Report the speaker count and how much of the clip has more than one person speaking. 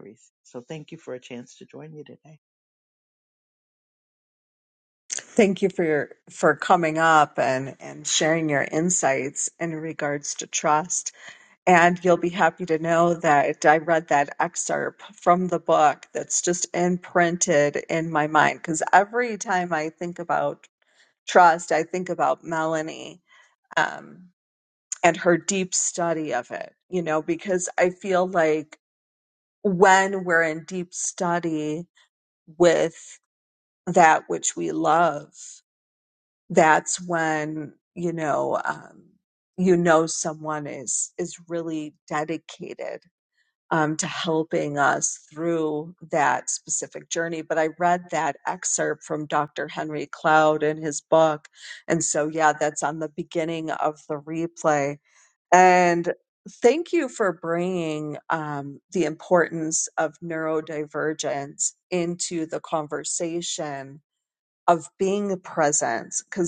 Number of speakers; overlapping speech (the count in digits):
2, no overlap